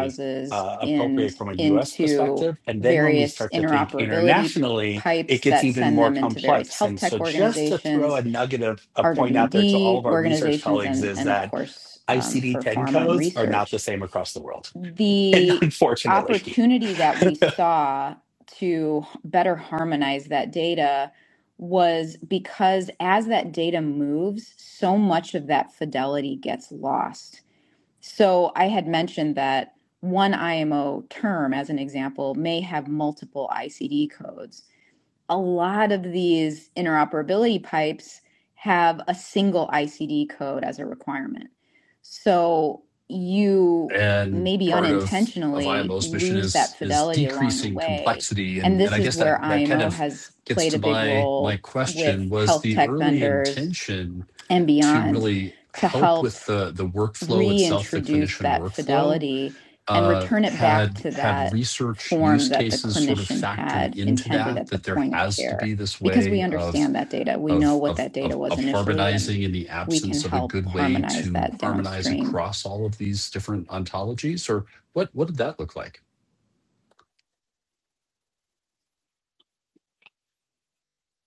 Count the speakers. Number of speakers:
three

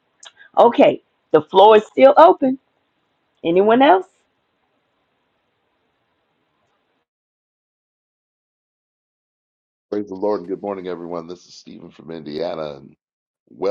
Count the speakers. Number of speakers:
two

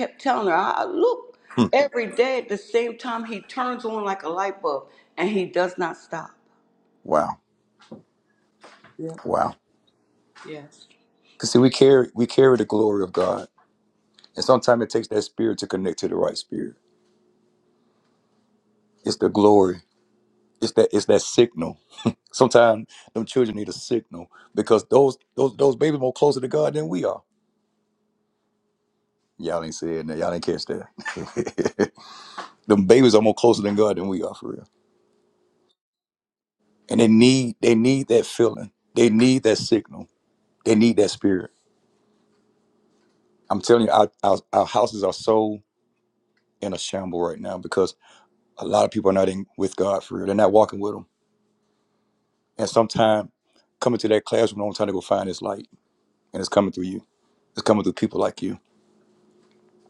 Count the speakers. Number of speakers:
two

